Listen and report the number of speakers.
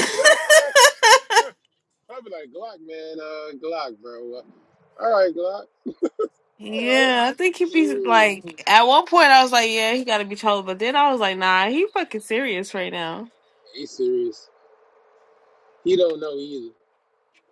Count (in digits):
2